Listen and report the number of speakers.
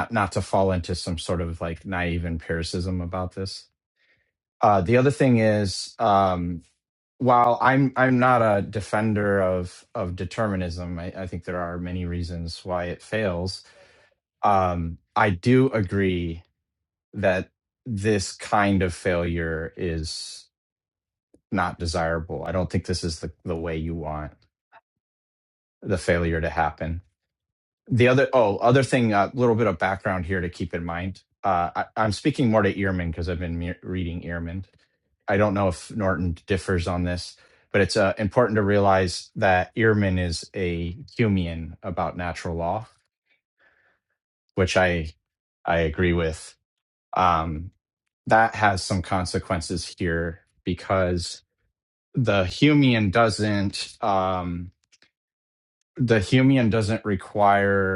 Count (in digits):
1